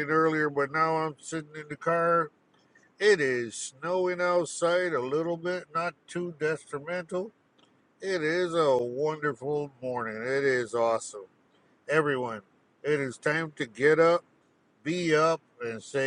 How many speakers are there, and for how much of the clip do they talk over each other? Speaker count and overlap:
1, no overlap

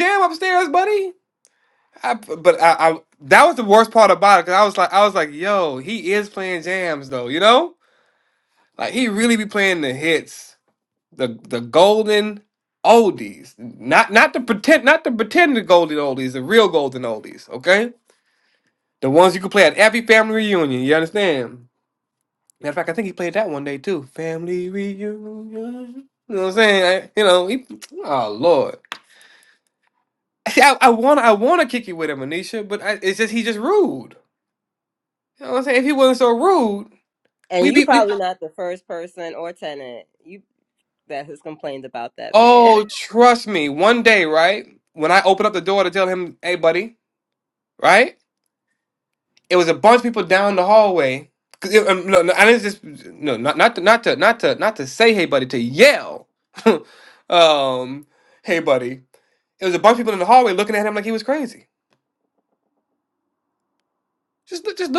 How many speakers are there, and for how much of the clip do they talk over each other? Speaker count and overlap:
2, about 1%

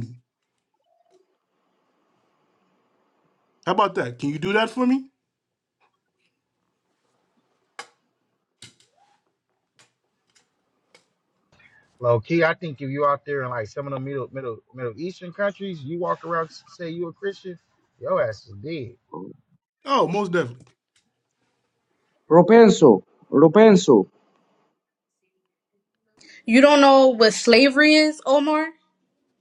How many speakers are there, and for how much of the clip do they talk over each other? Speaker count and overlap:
4, no overlap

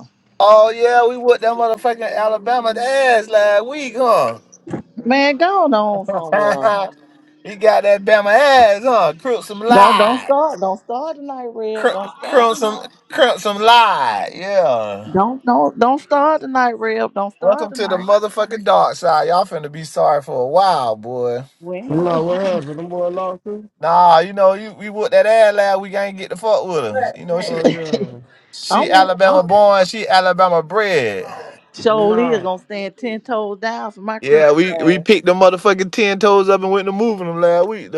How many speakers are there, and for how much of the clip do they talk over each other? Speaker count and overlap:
3, about 13%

